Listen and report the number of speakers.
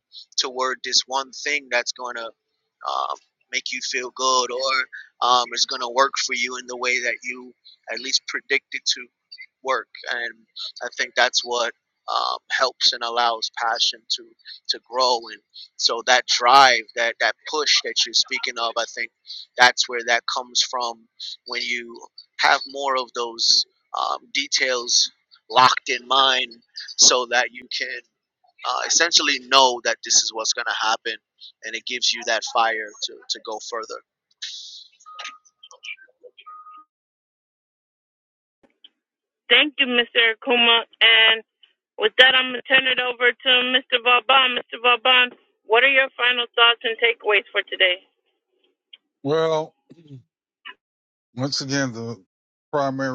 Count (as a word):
three